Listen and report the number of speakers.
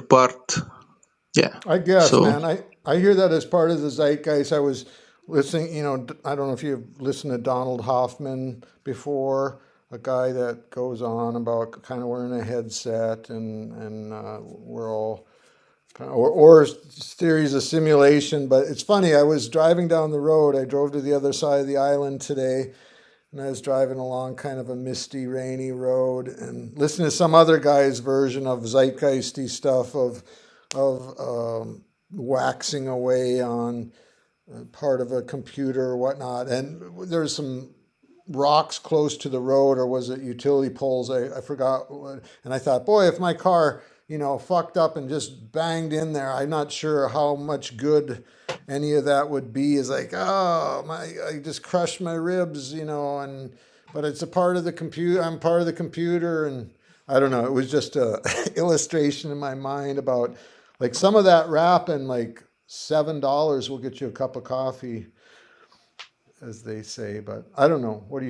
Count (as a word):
two